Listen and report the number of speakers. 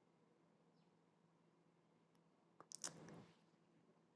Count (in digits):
0